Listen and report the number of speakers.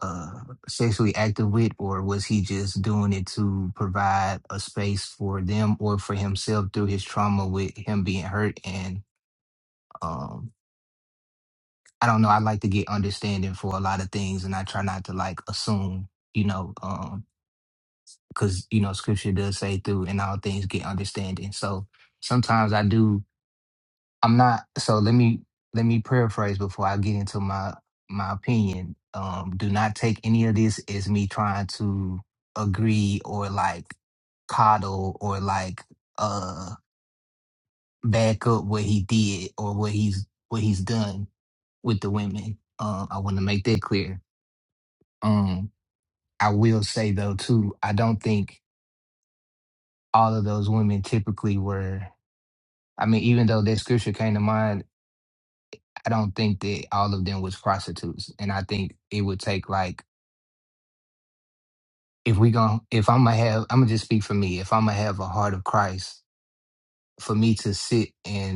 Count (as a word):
one